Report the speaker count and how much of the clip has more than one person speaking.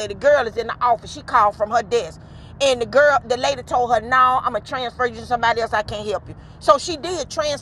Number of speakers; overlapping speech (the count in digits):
1, no overlap